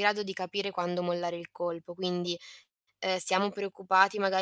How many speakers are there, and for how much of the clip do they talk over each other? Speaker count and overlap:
1, no overlap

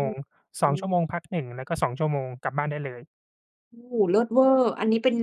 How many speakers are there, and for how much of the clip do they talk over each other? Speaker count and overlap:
2, about 8%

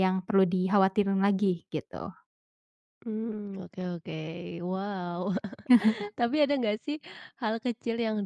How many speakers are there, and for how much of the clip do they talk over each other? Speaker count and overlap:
2, no overlap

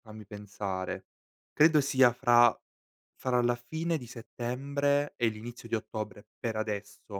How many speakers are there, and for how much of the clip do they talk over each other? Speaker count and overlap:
1, no overlap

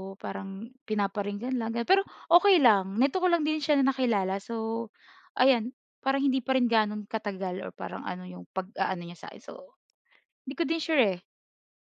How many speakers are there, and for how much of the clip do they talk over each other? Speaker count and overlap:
1, no overlap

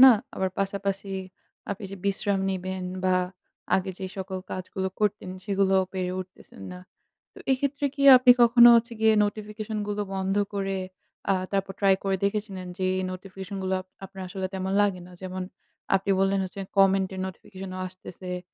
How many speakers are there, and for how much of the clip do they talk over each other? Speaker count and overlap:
1, no overlap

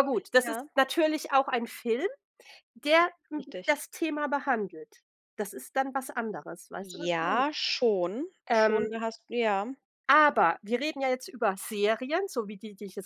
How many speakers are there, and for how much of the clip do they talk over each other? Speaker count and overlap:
2, about 11%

